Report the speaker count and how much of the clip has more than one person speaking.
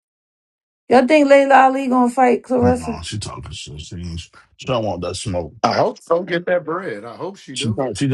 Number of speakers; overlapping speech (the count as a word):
three, about 7%